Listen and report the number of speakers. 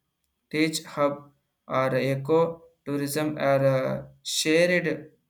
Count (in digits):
1